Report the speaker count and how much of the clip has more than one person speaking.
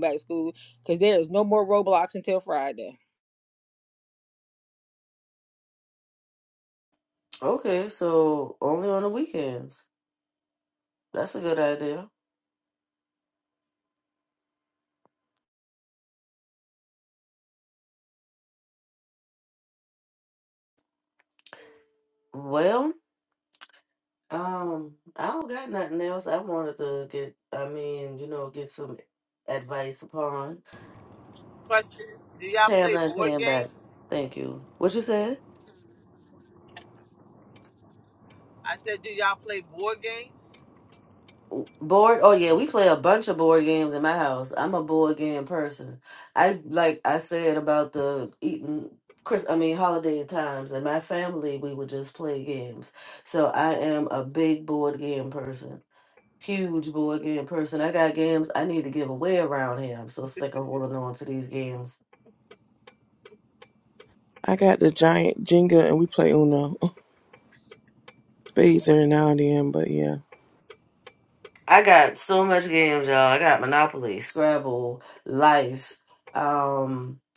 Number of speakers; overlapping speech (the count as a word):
four, about 1%